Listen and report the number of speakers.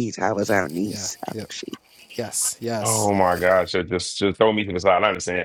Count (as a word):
three